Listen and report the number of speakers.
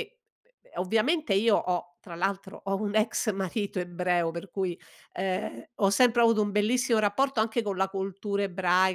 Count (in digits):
1